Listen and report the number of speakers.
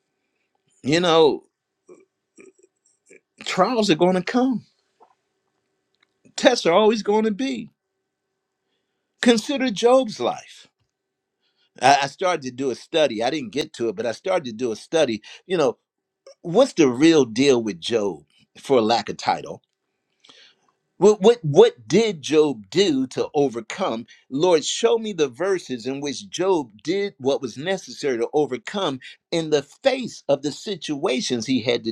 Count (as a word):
one